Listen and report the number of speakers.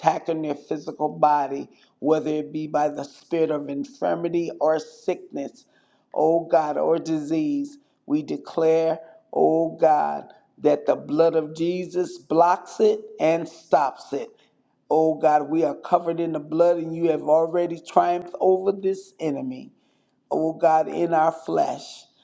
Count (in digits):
1